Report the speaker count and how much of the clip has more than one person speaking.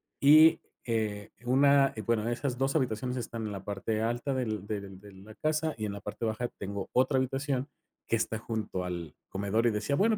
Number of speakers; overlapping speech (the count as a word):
one, no overlap